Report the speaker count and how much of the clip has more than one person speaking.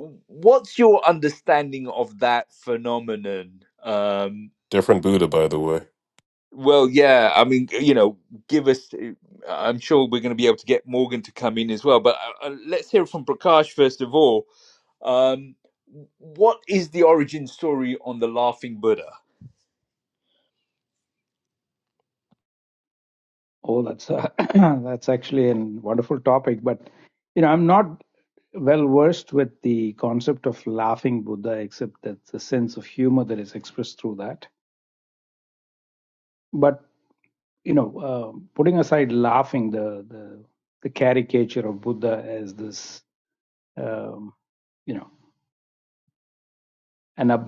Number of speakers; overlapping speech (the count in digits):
3, no overlap